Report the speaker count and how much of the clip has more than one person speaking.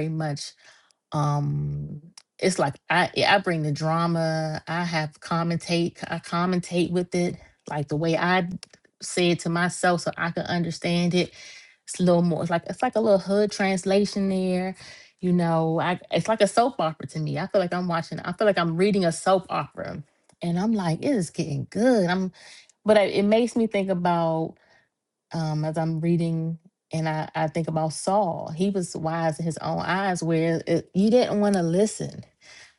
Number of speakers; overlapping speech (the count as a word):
one, no overlap